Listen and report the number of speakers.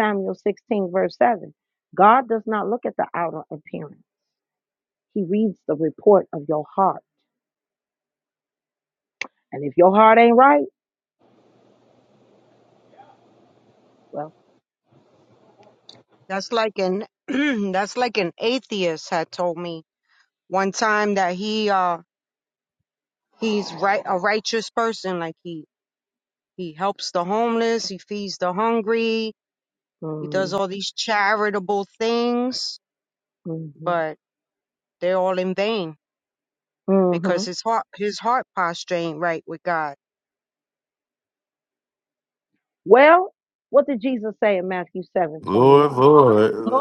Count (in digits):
3